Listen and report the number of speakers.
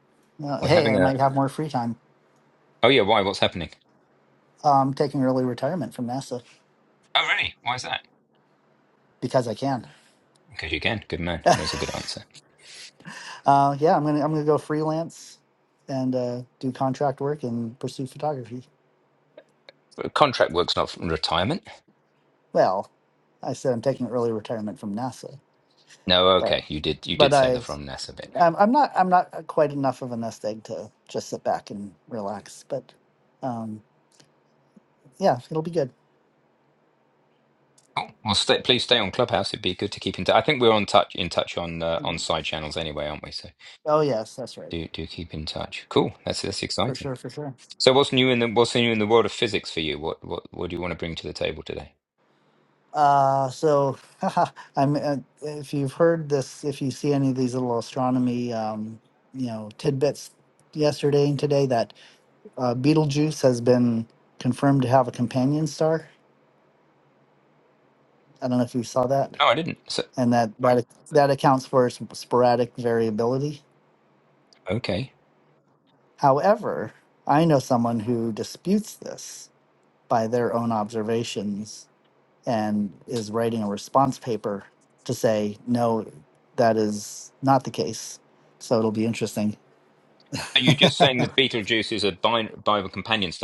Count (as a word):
two